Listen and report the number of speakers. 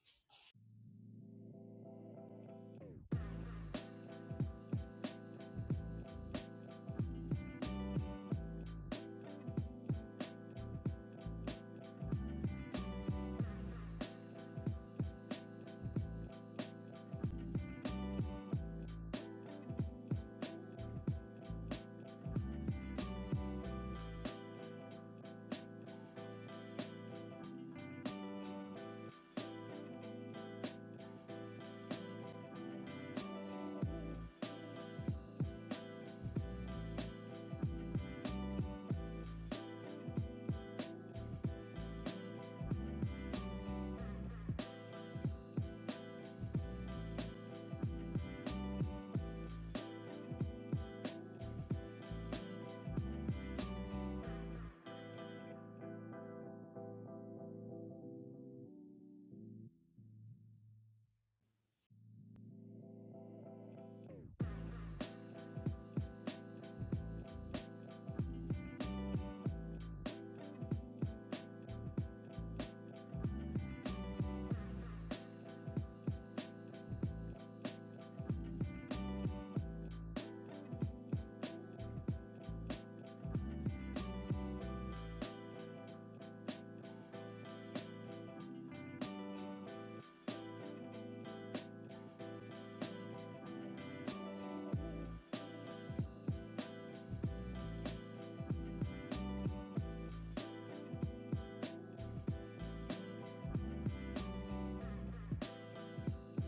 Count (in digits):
0